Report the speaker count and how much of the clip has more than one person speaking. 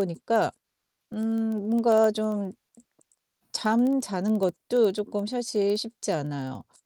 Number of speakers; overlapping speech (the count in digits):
1, no overlap